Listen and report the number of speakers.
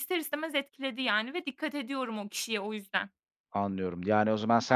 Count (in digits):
2